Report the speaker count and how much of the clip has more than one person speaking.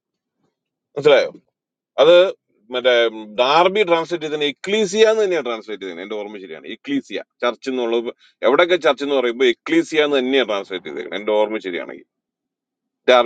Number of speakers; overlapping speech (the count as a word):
one, no overlap